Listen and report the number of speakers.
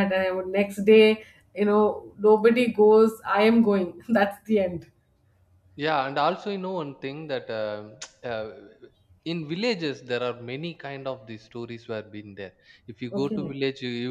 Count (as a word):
two